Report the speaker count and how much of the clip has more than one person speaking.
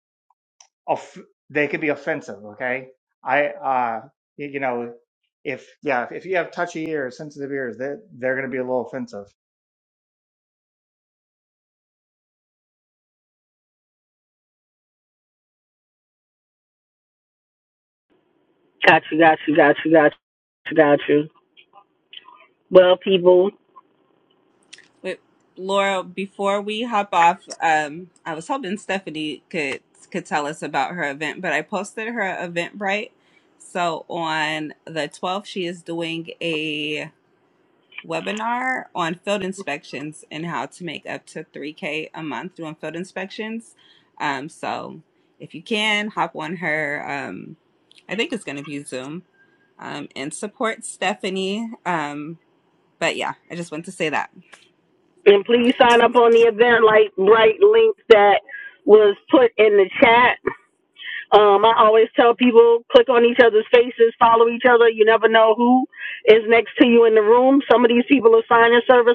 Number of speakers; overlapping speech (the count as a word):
three, no overlap